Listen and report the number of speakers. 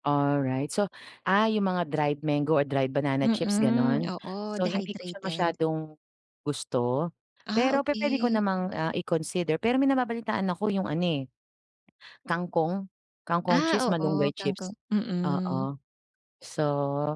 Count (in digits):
2